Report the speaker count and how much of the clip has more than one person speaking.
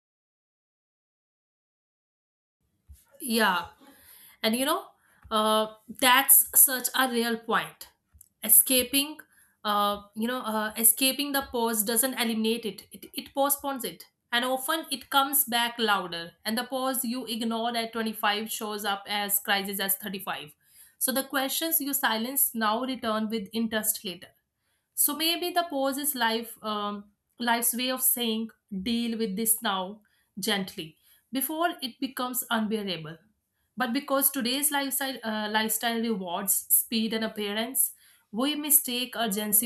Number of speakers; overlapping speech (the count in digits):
1, no overlap